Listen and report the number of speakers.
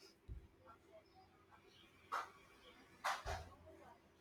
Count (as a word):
zero